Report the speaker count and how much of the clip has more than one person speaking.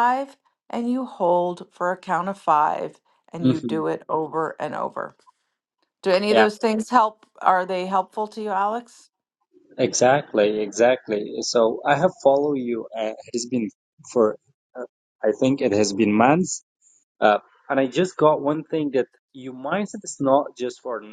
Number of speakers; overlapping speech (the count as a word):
two, about 3%